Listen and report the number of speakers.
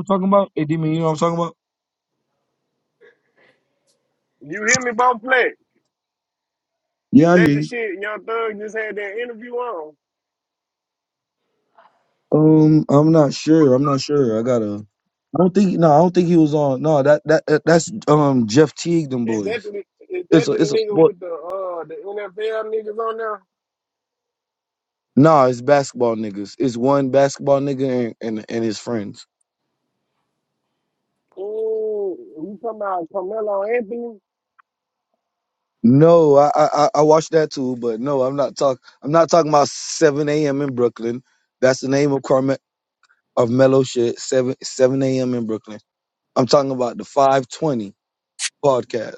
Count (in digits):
2